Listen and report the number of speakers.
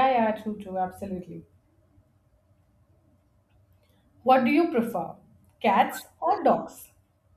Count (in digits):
1